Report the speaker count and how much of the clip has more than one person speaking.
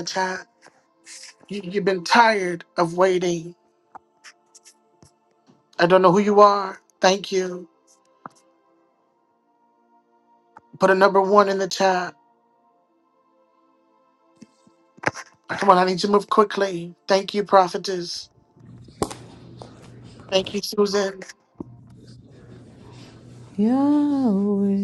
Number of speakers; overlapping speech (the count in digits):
2, no overlap